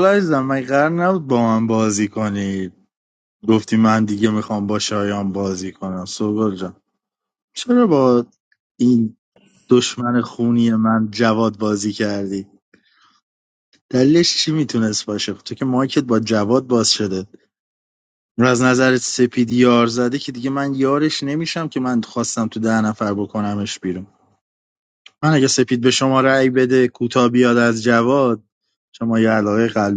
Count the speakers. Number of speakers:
one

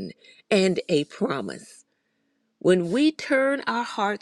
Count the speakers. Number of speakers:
one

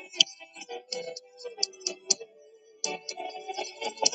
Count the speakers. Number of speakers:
zero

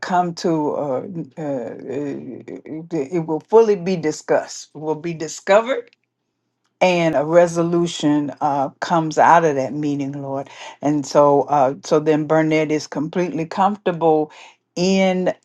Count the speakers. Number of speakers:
one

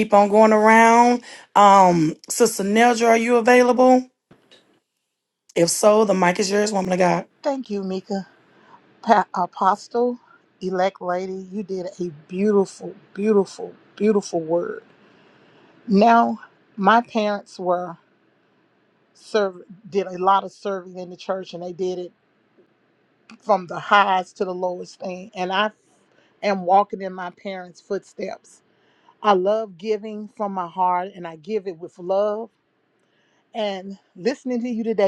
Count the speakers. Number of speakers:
two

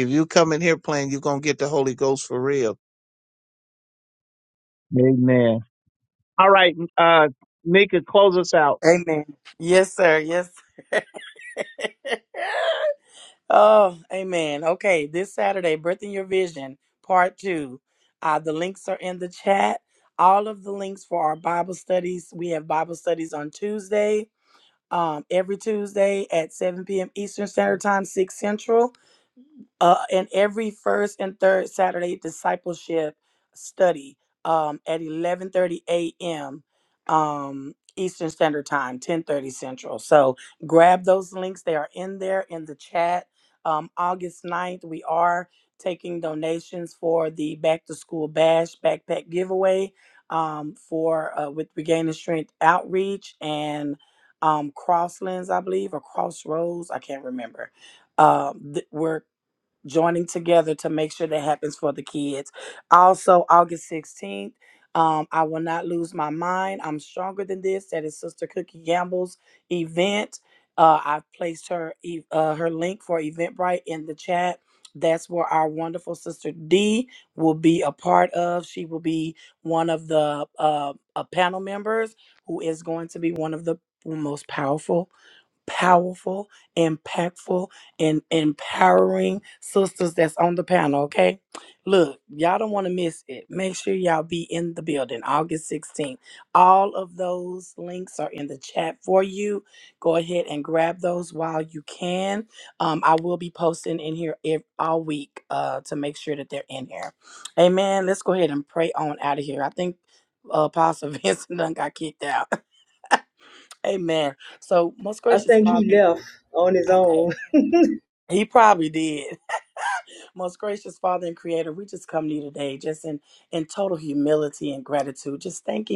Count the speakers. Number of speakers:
three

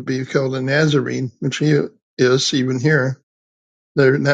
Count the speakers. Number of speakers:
one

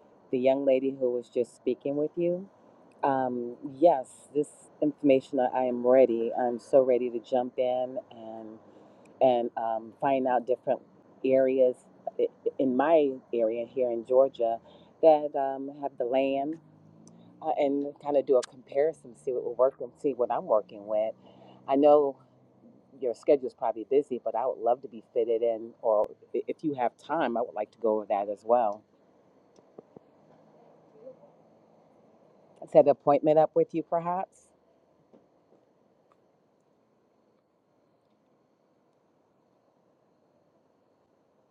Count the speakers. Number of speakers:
one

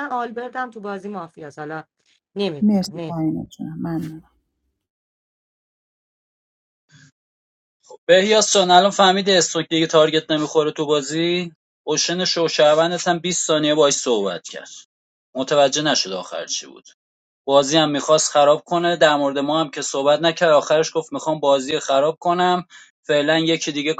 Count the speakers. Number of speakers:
three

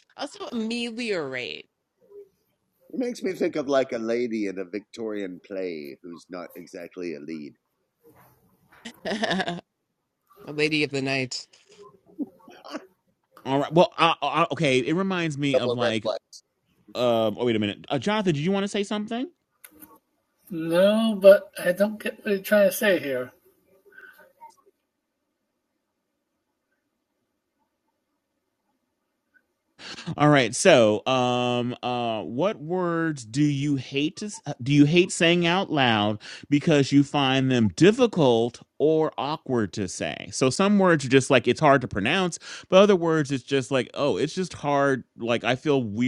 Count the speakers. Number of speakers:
four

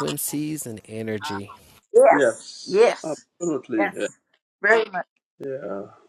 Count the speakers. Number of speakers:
three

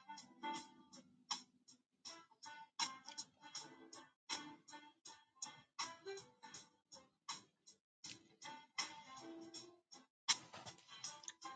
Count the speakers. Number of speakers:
zero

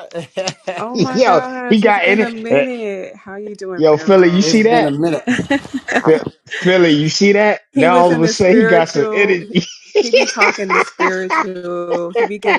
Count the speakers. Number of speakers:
three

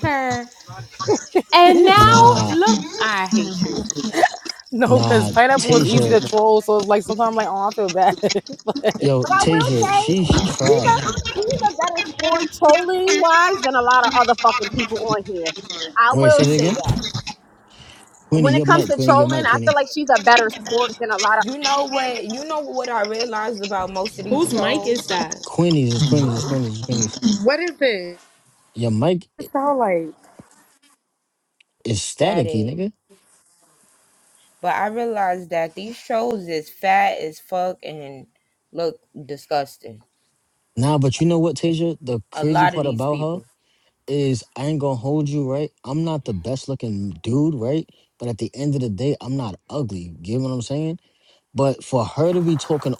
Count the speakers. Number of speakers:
six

